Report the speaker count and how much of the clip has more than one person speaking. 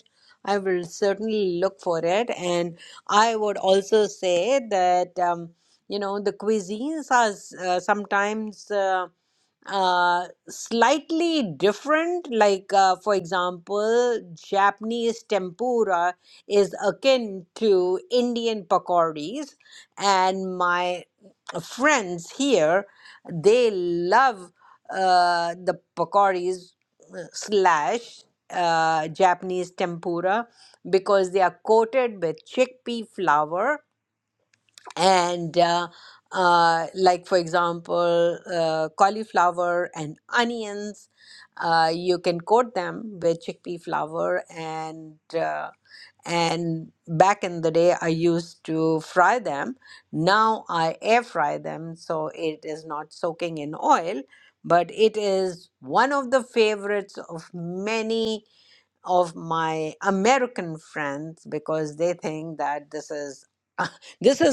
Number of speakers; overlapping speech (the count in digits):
1, no overlap